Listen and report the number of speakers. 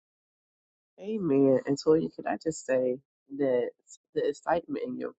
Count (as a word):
one